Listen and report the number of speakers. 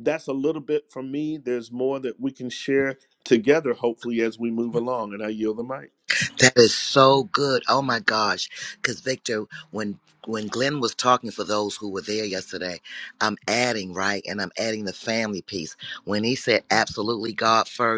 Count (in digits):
2